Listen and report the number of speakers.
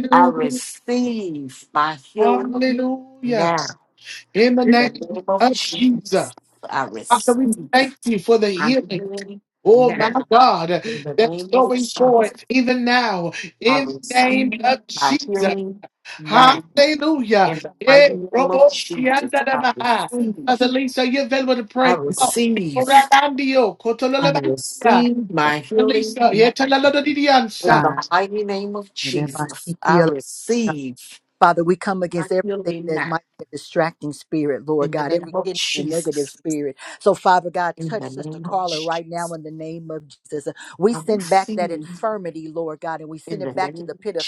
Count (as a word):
three